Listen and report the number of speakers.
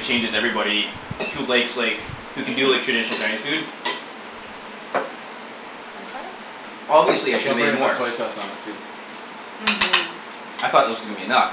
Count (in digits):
3